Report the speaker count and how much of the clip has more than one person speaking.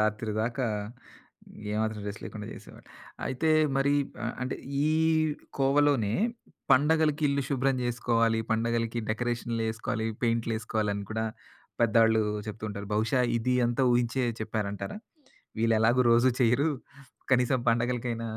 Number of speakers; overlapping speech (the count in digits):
1, no overlap